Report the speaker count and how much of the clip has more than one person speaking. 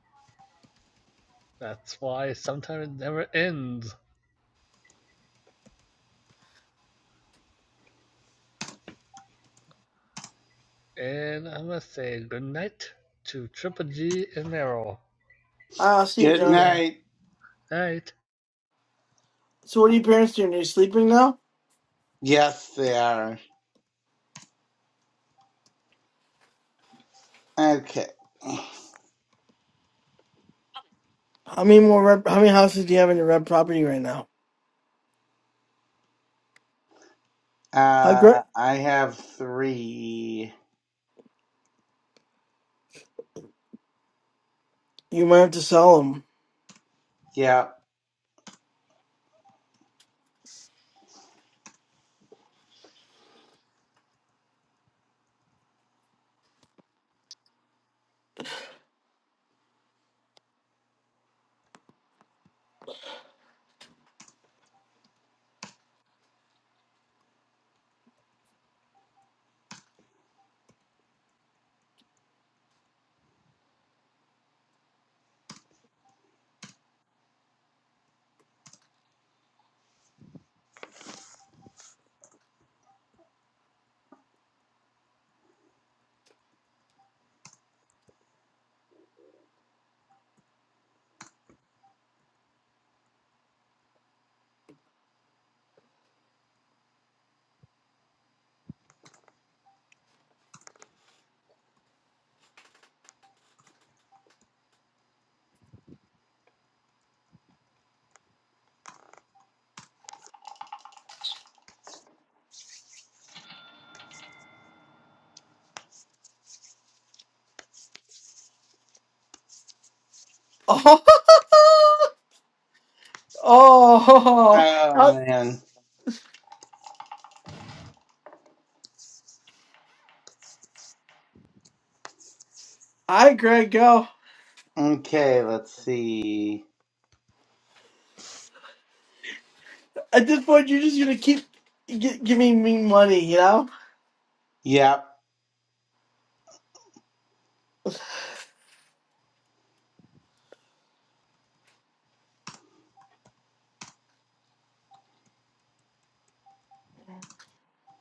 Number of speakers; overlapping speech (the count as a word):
three, about 1%